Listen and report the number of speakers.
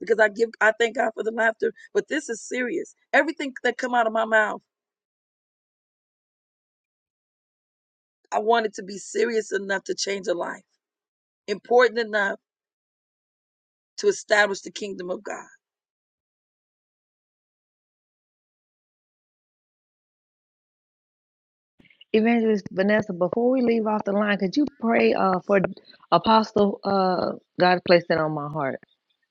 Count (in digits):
2